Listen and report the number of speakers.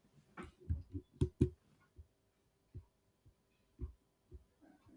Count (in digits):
0